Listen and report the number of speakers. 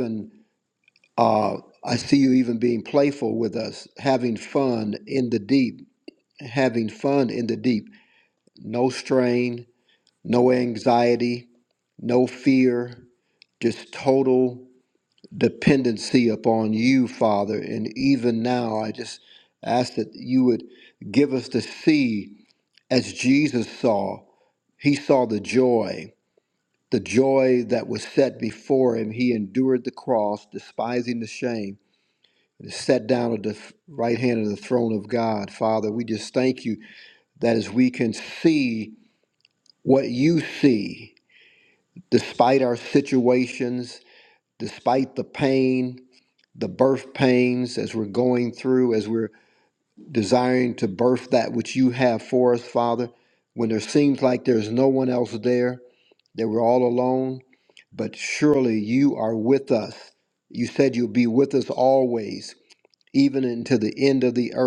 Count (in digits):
1